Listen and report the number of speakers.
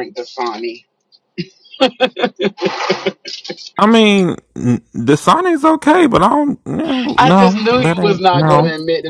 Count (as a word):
two